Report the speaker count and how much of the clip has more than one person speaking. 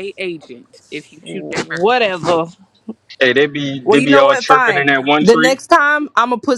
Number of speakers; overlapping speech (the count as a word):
three, about 29%